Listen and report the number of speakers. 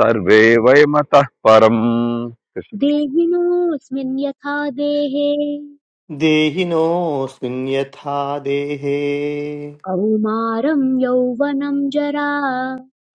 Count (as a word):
three